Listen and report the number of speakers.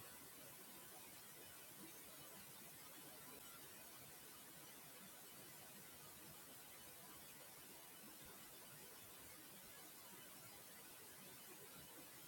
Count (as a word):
zero